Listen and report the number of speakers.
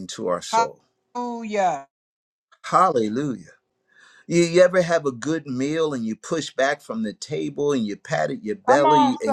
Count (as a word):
two